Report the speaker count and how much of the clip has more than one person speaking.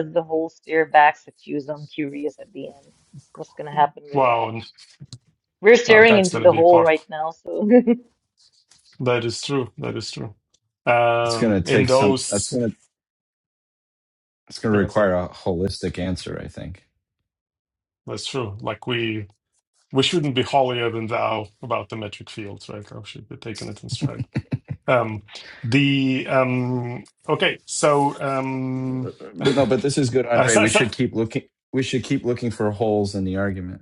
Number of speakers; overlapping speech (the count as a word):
three, about 12%